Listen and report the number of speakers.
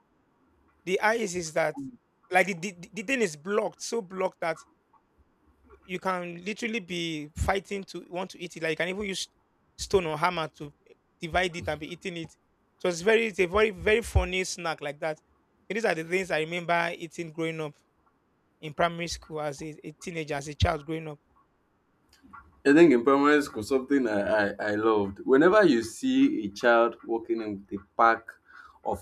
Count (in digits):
2